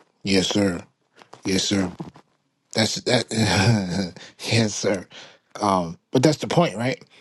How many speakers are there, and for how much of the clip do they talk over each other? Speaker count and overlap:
one, no overlap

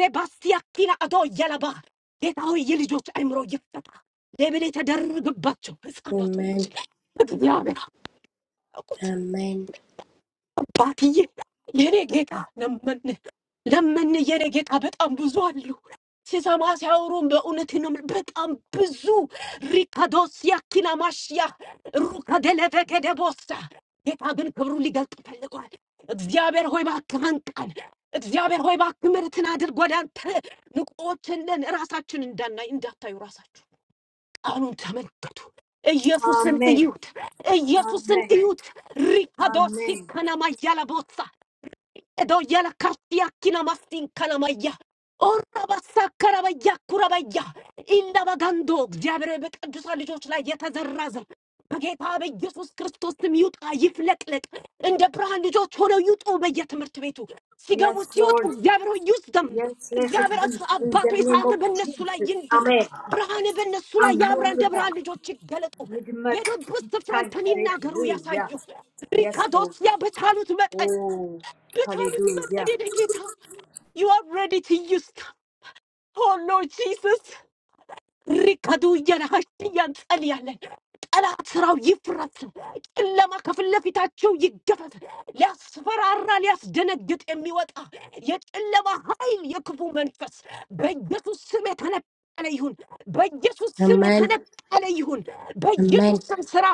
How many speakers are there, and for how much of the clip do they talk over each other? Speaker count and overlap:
three, about 12%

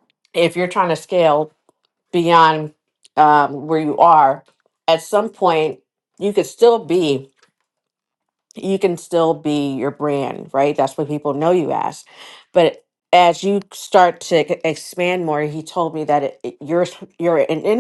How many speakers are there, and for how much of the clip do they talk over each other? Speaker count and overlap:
one, no overlap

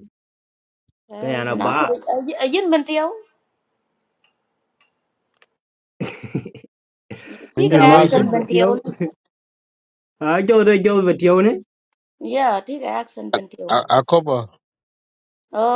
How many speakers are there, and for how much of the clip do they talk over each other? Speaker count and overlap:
three, about 13%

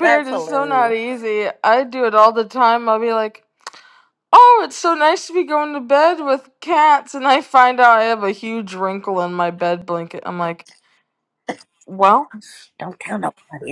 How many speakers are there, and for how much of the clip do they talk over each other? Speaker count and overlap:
two, about 7%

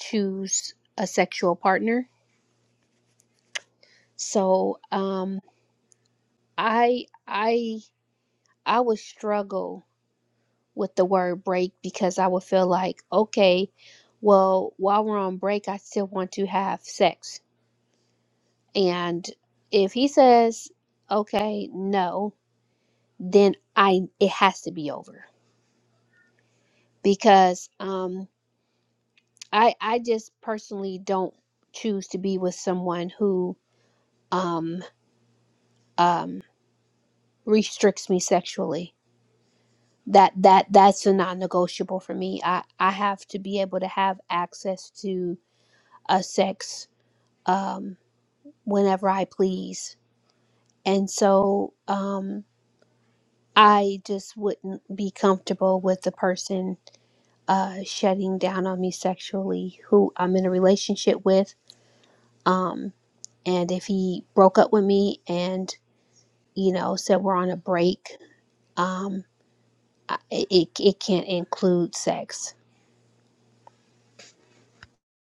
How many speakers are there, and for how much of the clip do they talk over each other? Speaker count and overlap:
one, no overlap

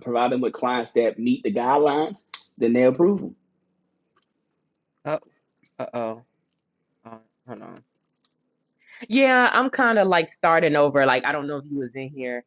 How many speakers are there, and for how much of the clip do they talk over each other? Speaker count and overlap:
two, no overlap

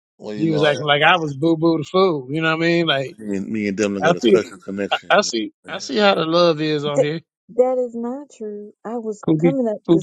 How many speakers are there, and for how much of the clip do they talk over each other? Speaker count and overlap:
three, about 18%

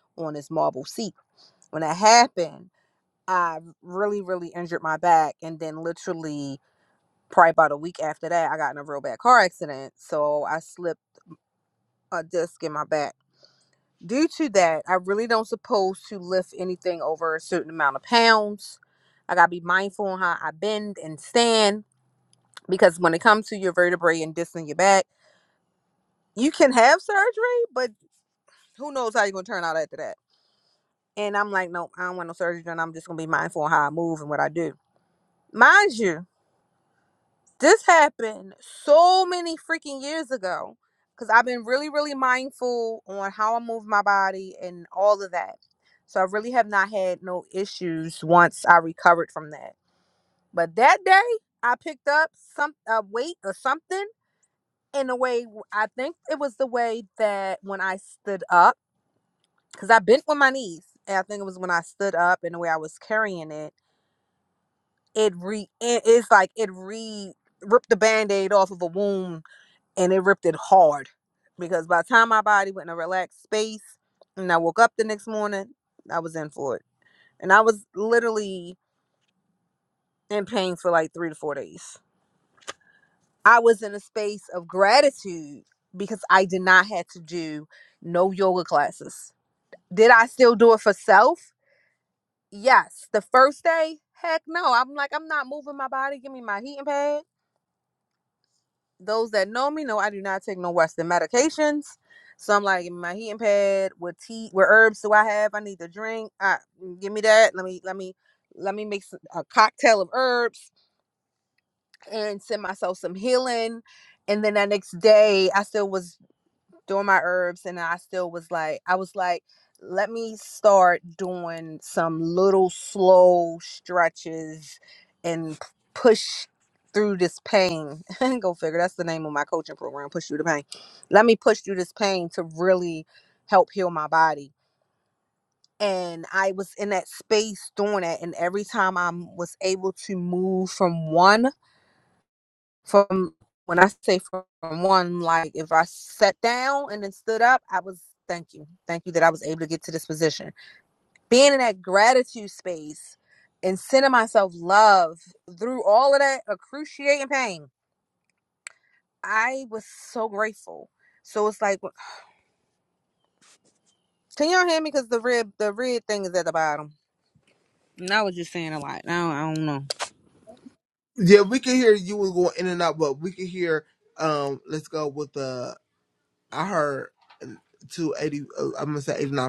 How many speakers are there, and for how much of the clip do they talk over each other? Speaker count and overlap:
two, no overlap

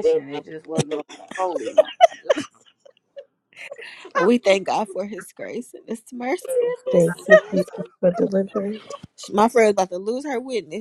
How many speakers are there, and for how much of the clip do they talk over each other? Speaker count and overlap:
three, about 7%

